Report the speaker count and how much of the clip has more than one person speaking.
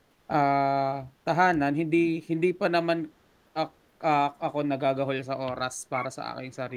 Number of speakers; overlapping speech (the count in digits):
1, no overlap